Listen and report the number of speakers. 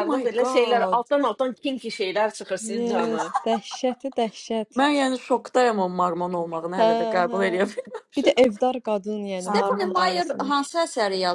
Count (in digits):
4